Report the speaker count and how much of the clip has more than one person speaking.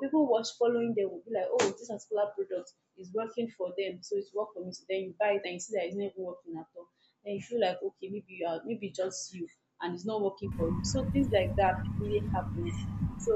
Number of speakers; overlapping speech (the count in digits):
1, no overlap